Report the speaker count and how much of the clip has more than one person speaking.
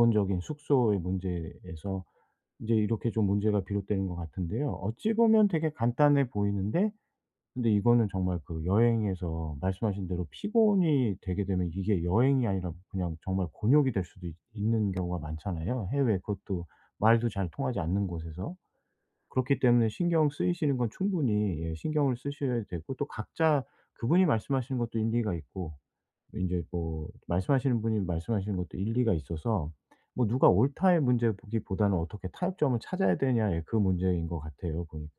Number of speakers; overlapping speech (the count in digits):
1, no overlap